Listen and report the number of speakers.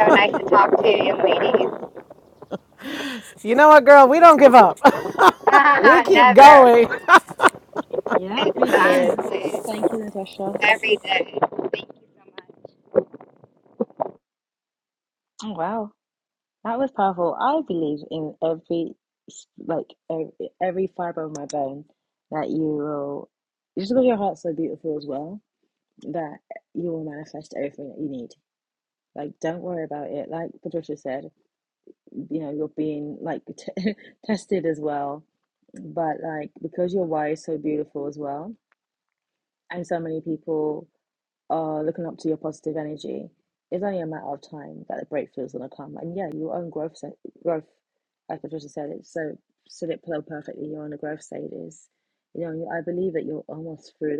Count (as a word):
three